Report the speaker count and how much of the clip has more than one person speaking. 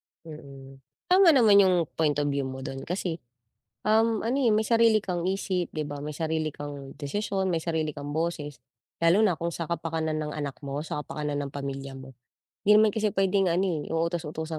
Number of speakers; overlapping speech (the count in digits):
1, no overlap